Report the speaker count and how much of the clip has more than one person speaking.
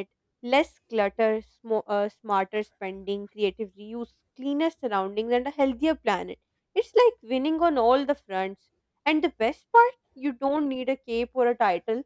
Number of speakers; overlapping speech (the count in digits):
1, no overlap